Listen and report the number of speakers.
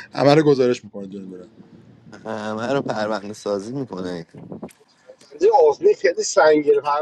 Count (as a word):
three